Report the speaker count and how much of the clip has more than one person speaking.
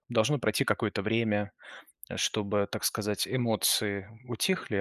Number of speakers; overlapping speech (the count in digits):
1, no overlap